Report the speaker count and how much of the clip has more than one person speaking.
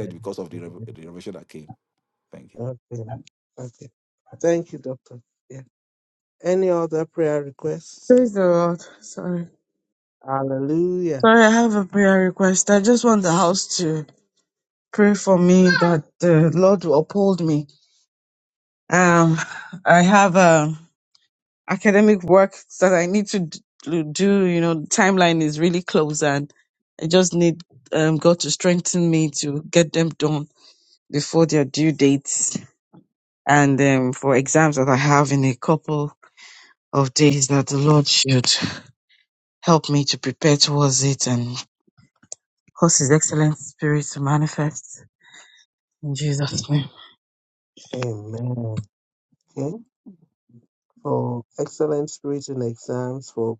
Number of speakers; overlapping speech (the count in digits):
3, about 1%